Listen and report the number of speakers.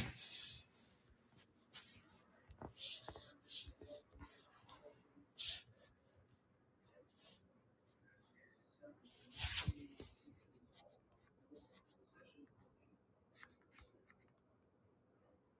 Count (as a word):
zero